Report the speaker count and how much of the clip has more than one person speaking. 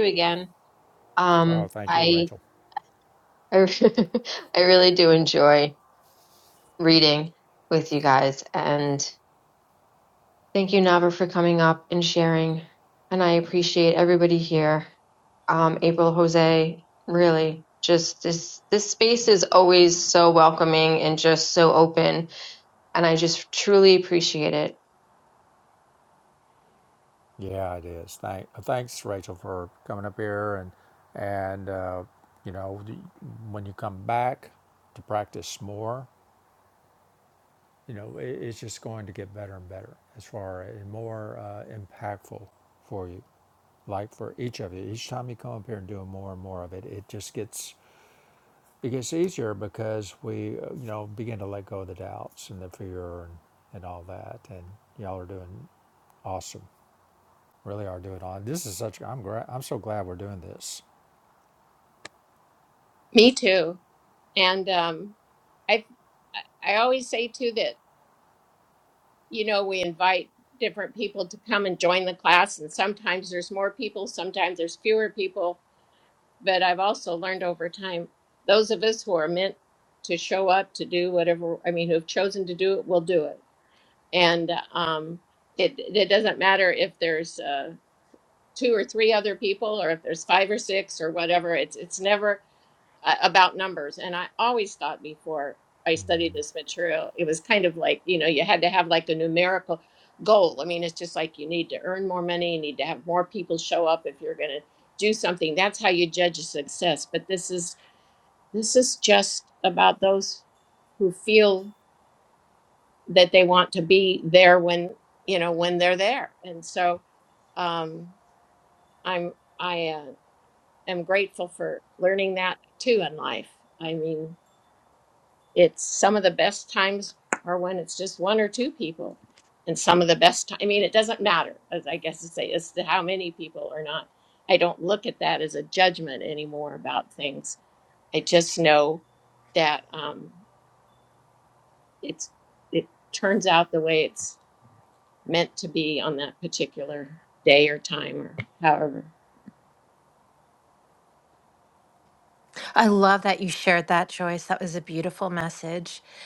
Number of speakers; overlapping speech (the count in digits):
4, about 1%